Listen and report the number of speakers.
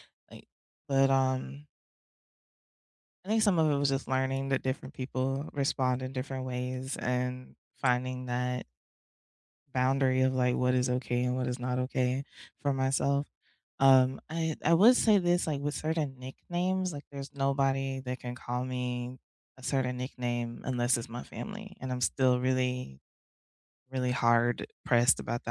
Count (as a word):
one